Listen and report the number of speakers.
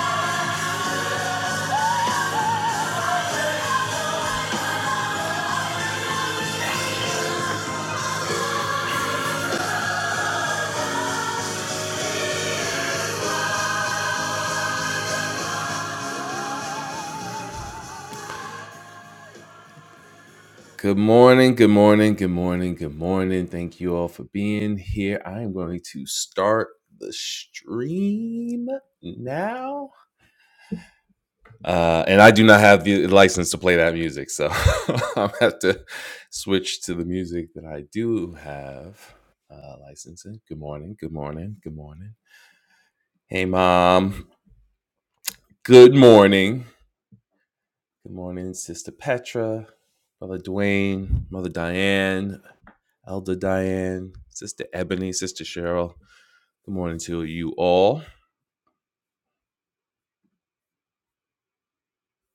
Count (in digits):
1